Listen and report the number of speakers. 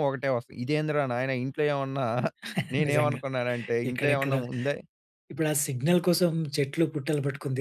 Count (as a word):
two